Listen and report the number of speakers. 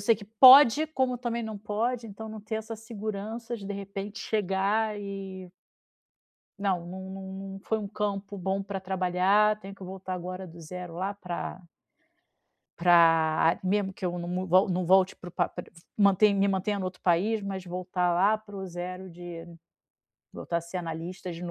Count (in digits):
1